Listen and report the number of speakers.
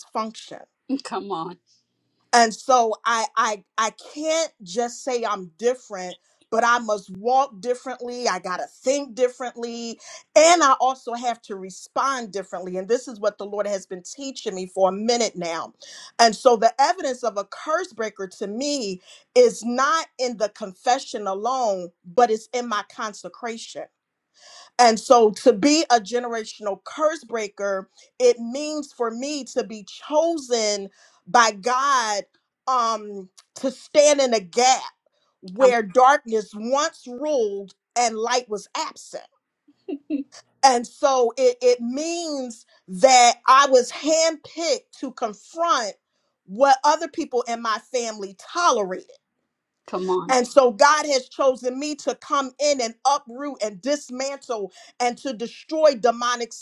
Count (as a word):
two